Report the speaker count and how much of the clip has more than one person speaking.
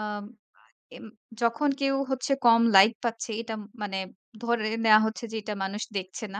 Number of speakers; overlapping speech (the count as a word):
one, no overlap